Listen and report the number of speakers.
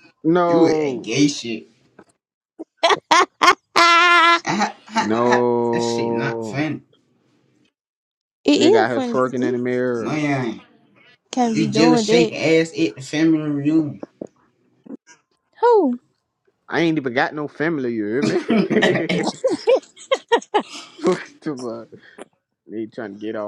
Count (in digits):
3